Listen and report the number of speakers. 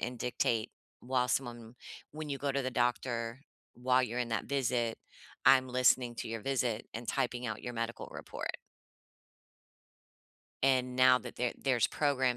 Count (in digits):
1